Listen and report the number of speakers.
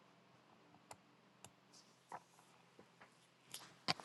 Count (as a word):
zero